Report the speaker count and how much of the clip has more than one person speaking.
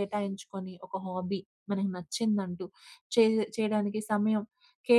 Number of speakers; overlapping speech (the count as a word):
one, no overlap